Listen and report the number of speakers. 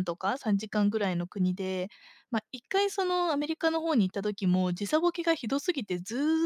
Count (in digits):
1